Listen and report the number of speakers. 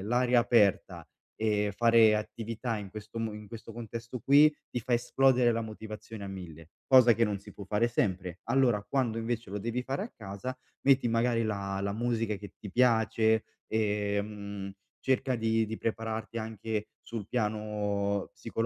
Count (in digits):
1